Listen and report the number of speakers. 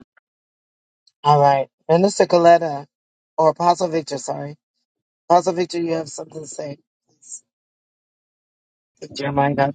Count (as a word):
one